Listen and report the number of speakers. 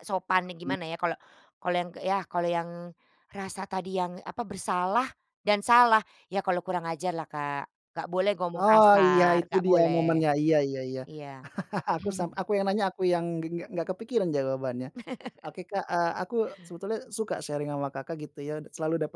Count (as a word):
two